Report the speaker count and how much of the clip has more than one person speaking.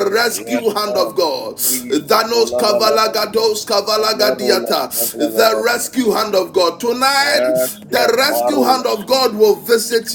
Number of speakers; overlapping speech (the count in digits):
2, about 48%